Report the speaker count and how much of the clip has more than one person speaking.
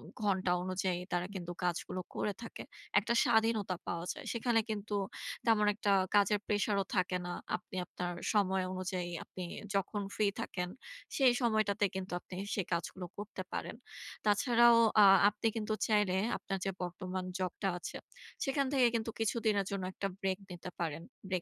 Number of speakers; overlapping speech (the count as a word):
one, no overlap